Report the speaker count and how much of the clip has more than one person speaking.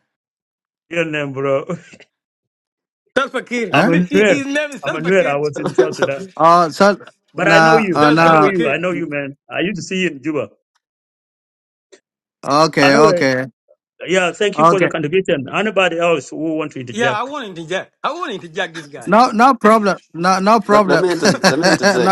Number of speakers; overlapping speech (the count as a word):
four, about 20%